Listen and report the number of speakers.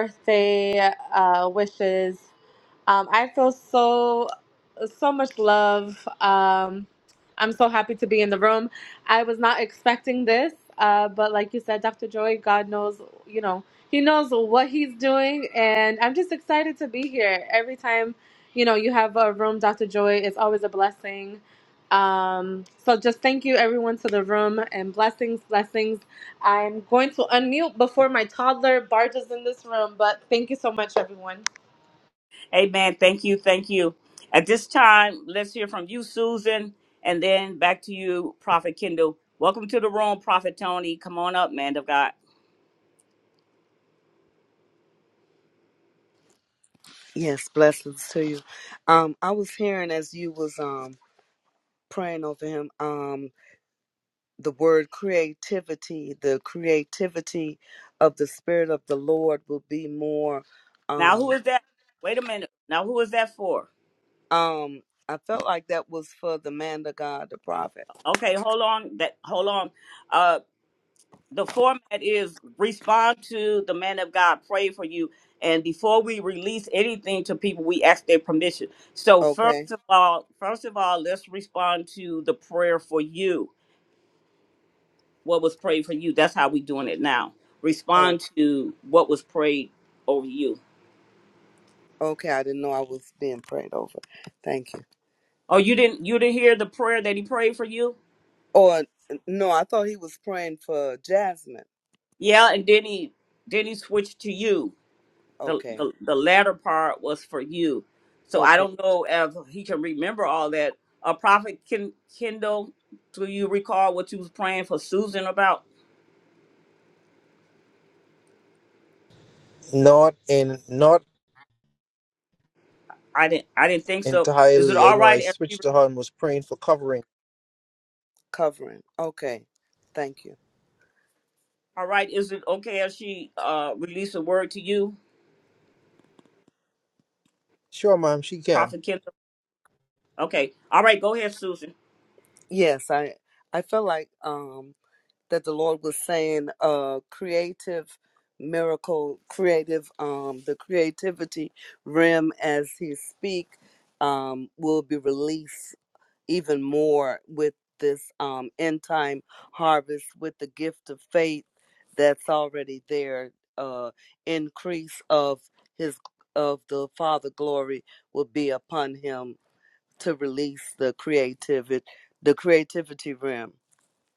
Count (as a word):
four